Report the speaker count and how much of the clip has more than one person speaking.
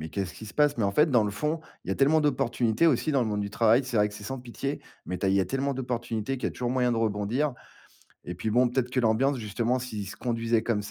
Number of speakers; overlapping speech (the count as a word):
one, no overlap